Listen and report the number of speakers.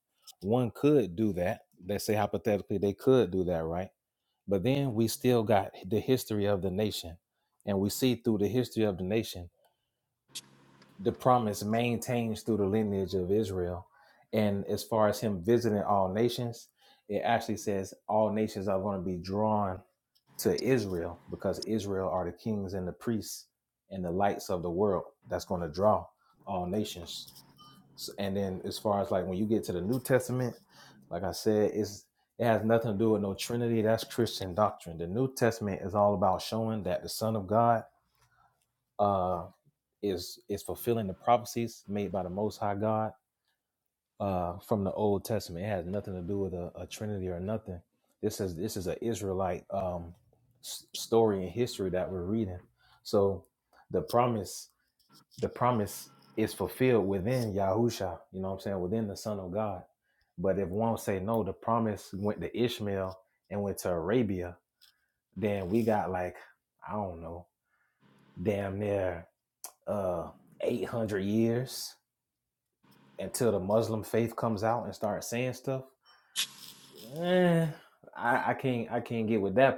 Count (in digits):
1